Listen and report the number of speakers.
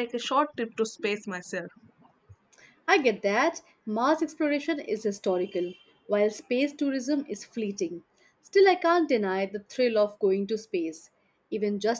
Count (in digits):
2